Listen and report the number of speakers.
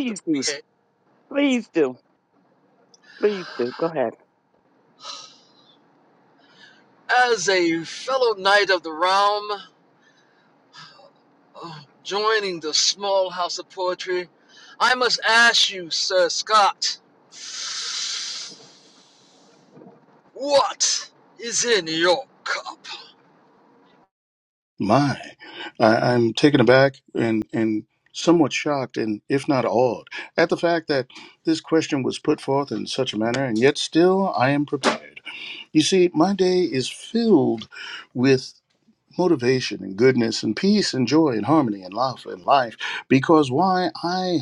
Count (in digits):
3